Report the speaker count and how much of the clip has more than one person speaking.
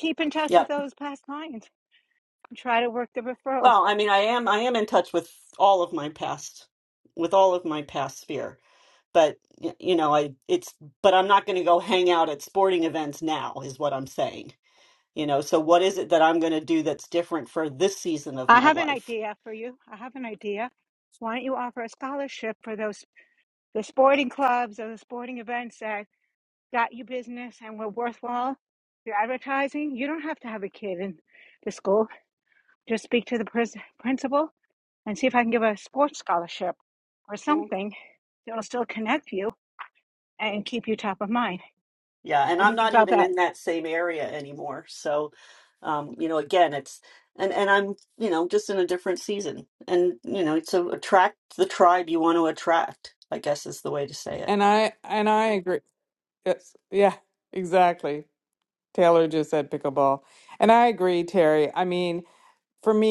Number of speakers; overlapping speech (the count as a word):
three, about 2%